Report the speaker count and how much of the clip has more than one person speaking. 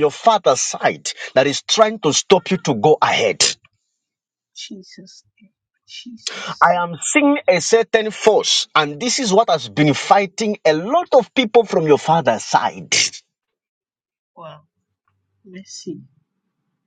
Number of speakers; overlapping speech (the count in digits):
2, no overlap